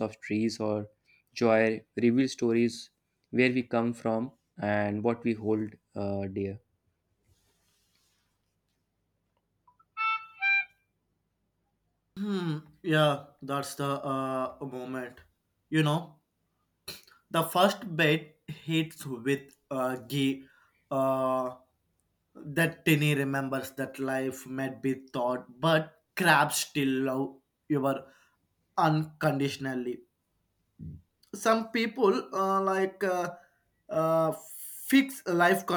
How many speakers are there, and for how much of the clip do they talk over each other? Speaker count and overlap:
two, no overlap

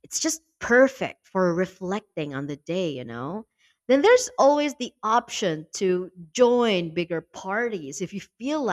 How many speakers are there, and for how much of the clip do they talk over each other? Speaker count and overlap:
one, no overlap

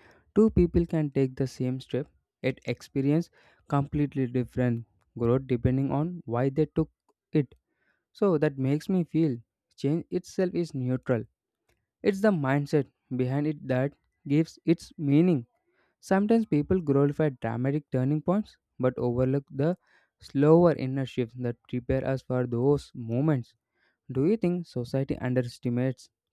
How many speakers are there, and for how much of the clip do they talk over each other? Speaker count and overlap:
one, no overlap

